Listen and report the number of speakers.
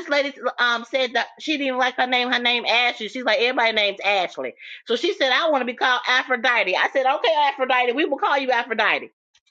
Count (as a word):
one